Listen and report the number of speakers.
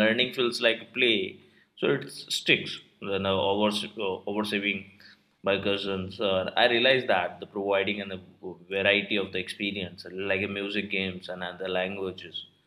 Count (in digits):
1